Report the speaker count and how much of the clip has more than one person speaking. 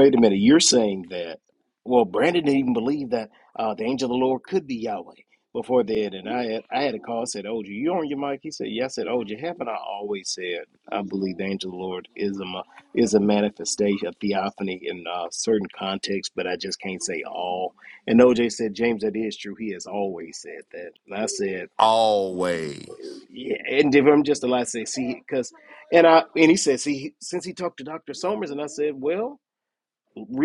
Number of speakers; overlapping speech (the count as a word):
two, no overlap